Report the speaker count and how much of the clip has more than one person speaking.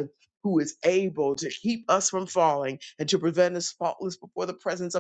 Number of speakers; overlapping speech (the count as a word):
one, no overlap